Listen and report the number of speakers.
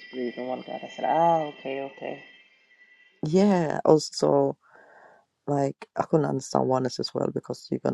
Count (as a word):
two